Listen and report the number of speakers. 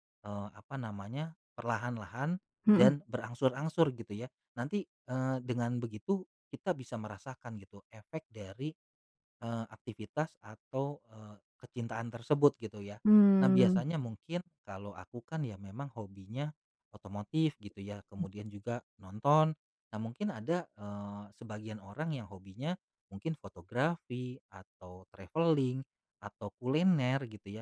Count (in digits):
2